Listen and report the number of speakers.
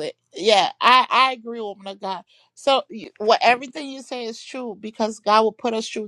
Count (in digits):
1